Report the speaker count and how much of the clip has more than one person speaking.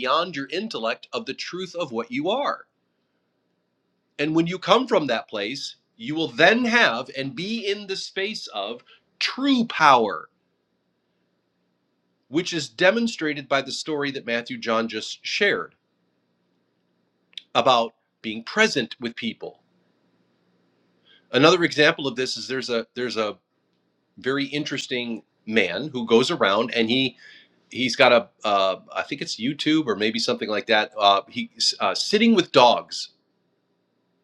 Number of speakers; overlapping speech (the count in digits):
1, no overlap